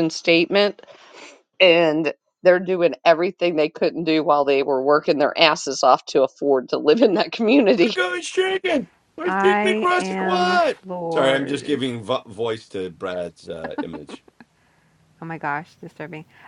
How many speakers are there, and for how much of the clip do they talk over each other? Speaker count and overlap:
three, about 13%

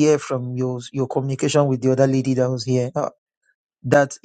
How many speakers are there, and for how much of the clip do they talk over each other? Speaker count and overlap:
one, no overlap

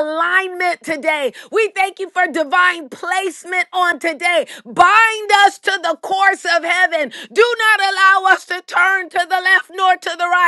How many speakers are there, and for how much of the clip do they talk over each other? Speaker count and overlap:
one, no overlap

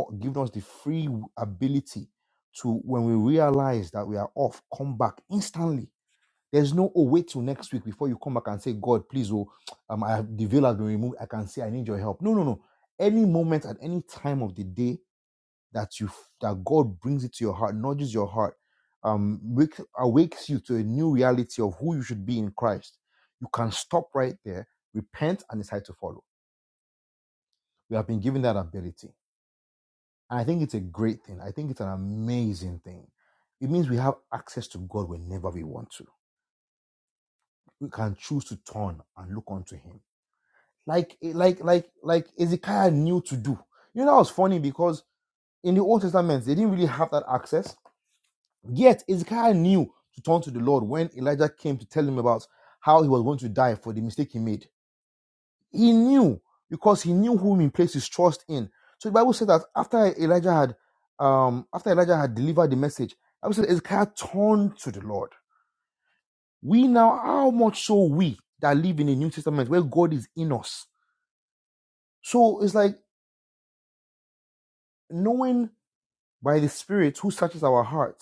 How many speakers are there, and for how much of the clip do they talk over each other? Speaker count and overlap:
one, no overlap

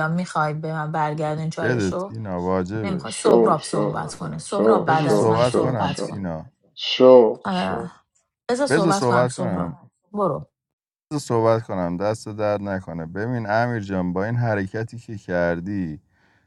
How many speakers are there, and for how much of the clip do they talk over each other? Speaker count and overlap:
three, about 27%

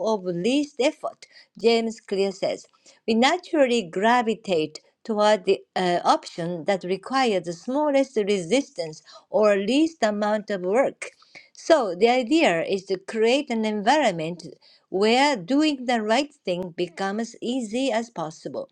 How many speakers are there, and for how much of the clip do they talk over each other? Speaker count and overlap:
one, no overlap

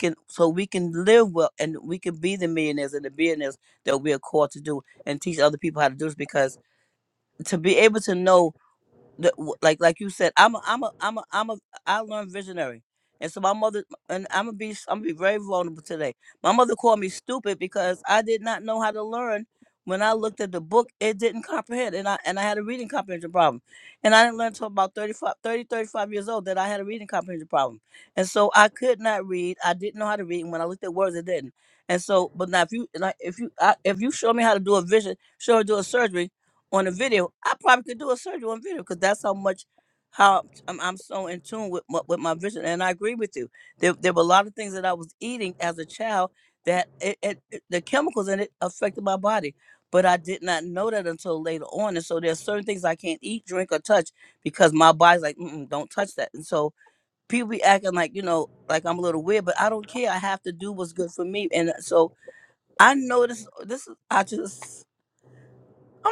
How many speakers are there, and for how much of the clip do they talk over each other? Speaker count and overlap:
one, no overlap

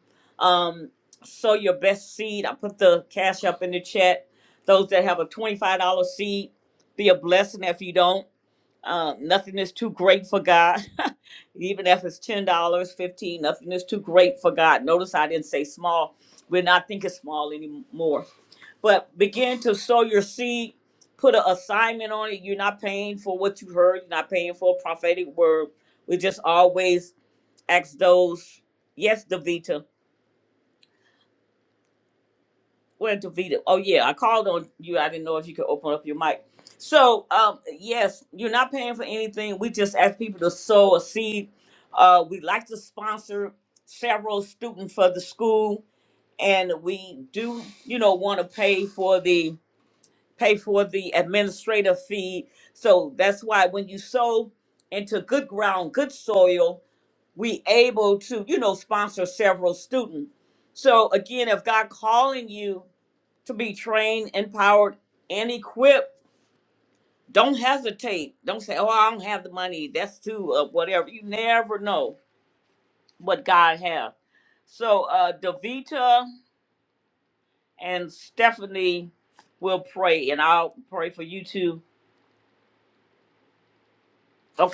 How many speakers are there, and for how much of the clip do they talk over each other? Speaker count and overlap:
one, no overlap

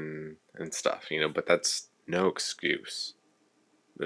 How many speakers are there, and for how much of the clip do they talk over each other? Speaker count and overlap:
one, no overlap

